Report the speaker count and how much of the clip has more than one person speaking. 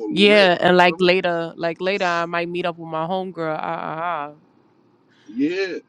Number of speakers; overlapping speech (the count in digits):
2, about 16%